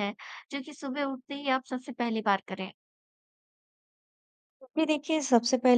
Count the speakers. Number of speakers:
2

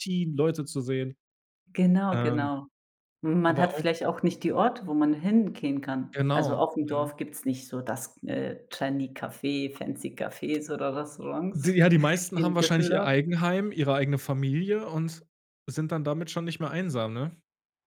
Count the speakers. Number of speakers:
2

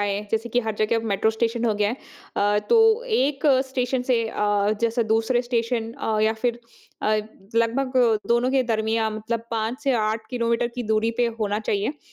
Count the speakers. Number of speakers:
1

